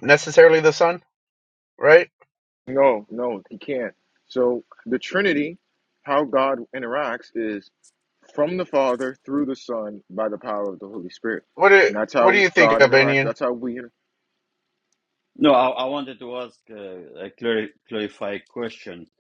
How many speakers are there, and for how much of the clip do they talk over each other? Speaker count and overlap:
3, about 7%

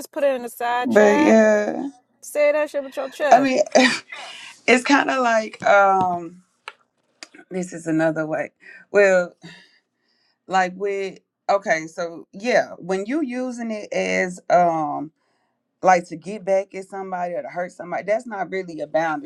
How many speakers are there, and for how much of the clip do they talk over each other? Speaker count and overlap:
2, about 4%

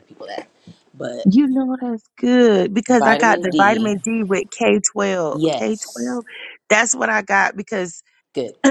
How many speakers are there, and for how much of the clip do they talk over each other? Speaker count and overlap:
2, about 17%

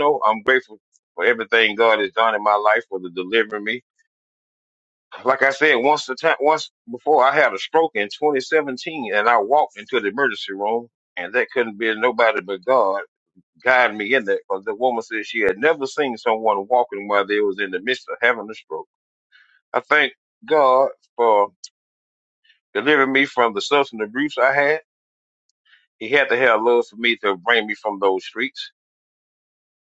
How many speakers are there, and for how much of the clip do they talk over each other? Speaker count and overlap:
1, no overlap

